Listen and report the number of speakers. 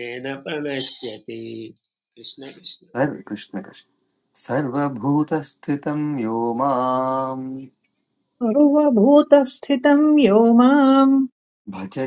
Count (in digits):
3